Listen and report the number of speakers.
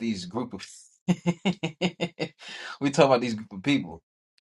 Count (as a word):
one